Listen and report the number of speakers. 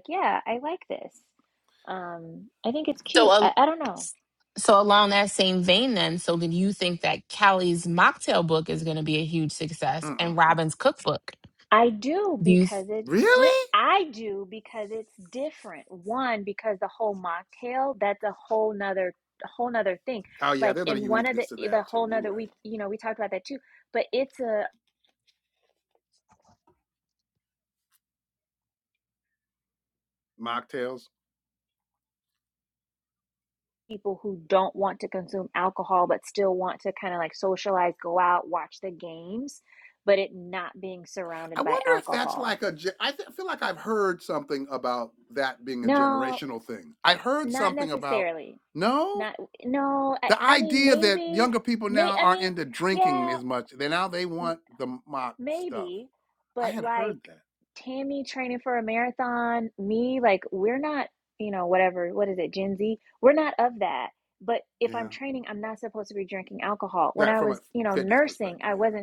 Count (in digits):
3